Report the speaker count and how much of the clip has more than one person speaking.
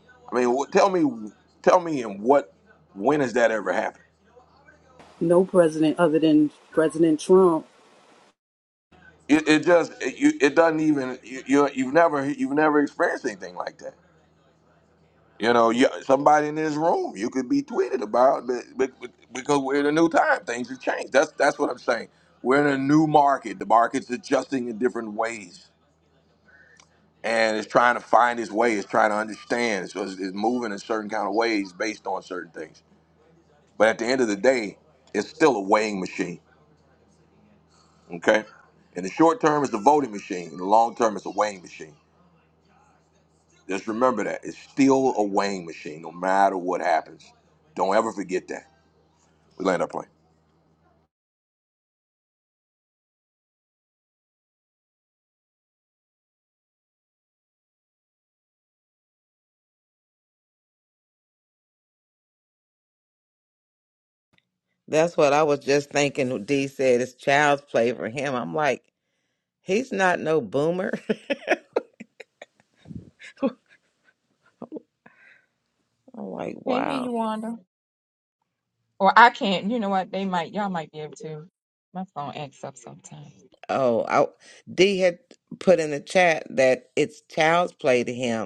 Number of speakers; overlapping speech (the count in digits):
4, under 1%